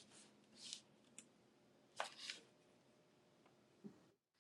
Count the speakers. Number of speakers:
0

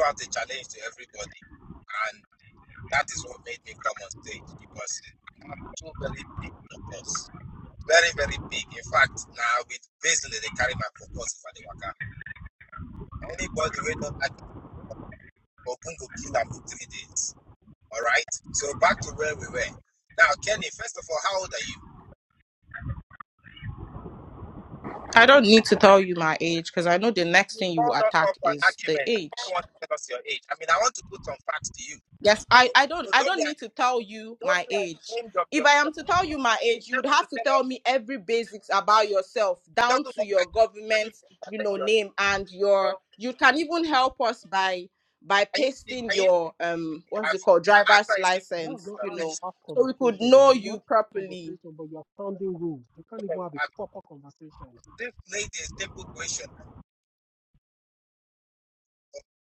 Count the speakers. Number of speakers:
3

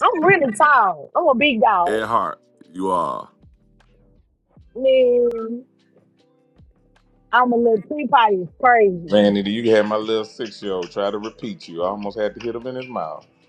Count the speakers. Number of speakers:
3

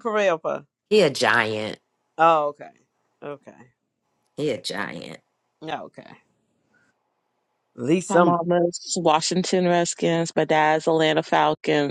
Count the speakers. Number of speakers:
3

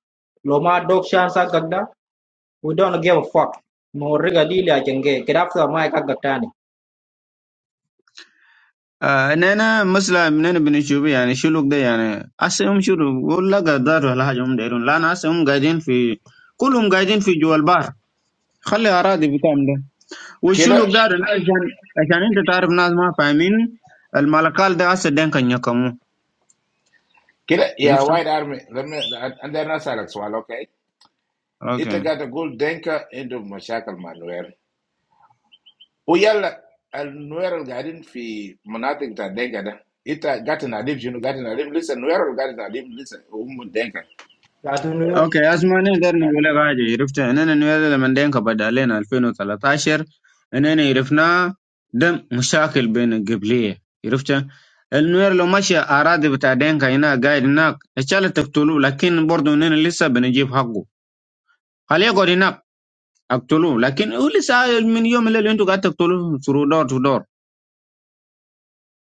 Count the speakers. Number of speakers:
3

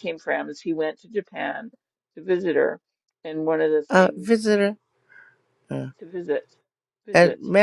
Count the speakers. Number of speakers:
2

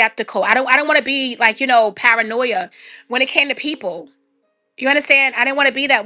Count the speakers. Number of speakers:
1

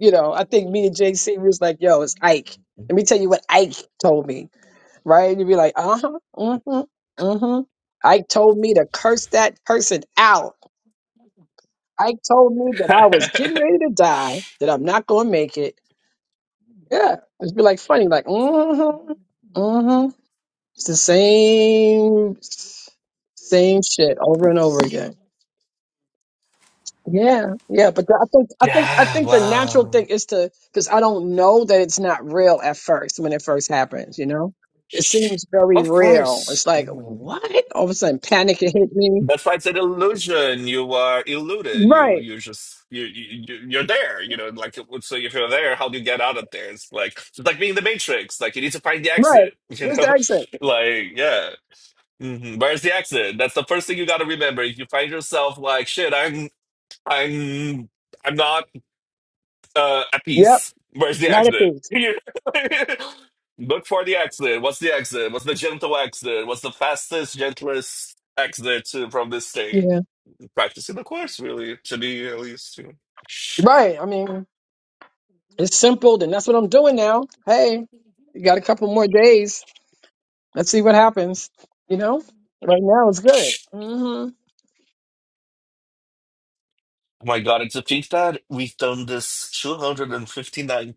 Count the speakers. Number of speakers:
2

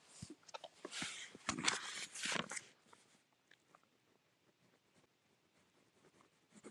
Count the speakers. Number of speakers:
0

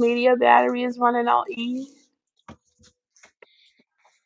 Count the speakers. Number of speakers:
1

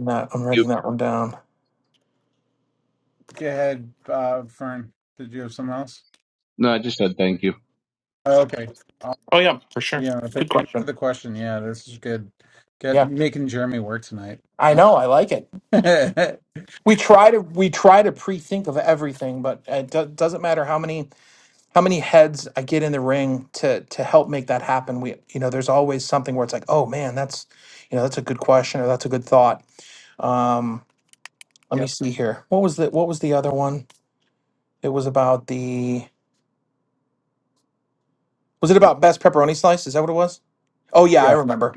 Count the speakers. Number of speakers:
3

